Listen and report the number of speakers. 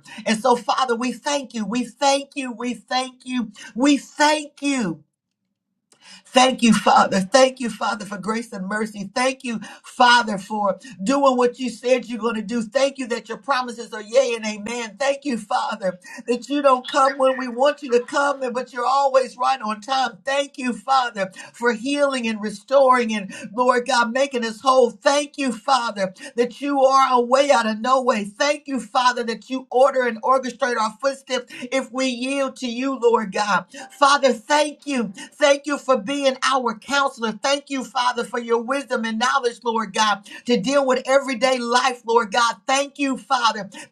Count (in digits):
1